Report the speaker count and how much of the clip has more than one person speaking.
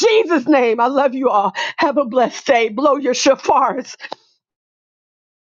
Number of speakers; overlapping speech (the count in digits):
1, no overlap